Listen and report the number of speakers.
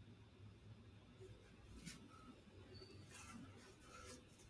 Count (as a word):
zero